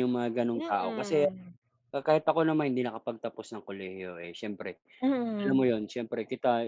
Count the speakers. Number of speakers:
two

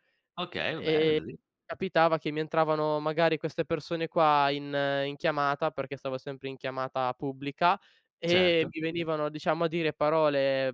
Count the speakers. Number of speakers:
two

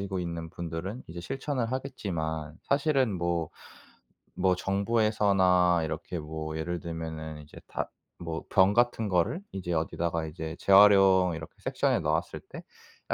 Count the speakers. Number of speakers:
one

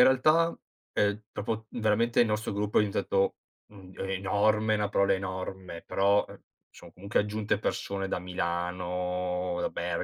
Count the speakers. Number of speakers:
one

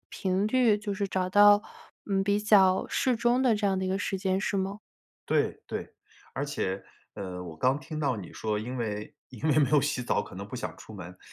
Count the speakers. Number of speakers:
two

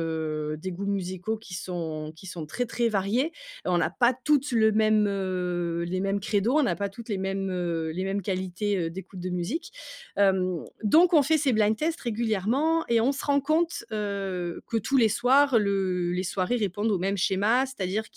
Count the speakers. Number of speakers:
one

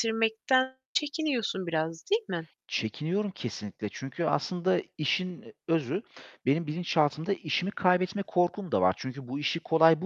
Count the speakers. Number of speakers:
two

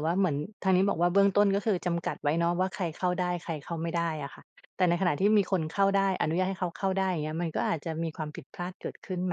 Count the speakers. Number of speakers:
one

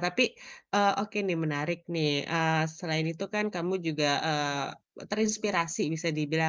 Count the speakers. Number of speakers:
one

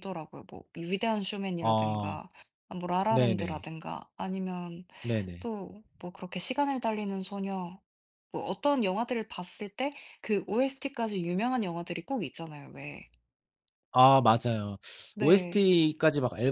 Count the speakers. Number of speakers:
two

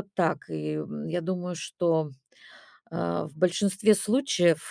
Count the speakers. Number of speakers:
one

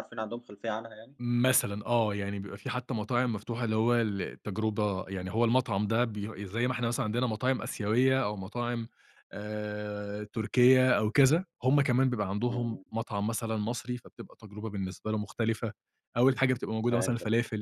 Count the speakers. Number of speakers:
two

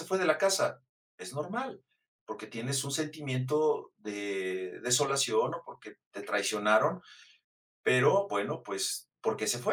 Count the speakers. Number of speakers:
one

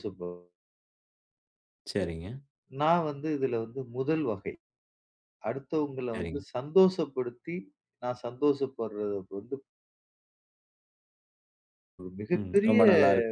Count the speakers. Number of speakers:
two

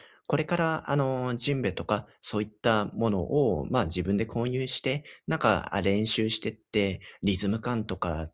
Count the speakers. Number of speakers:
one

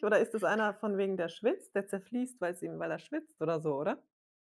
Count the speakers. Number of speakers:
one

